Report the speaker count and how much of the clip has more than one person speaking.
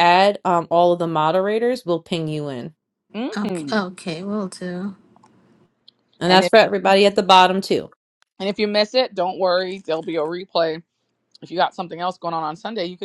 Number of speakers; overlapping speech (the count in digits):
3, about 5%